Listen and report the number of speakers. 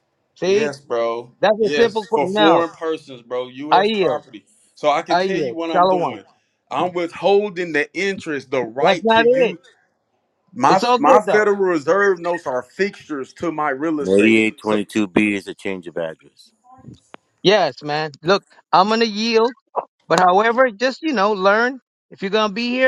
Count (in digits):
3